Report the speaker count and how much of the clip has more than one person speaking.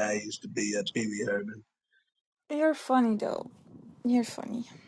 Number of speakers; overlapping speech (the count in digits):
2, no overlap